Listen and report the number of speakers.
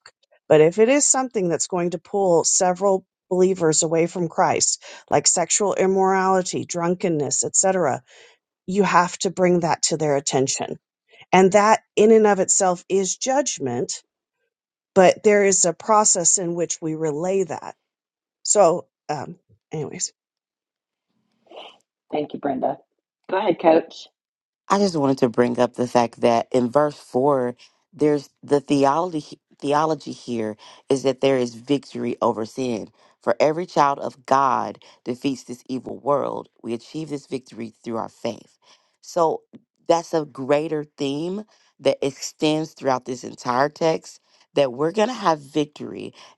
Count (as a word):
three